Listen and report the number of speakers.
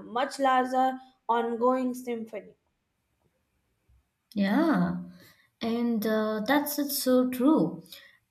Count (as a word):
two